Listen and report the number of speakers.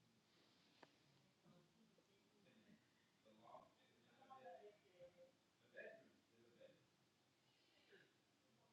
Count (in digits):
0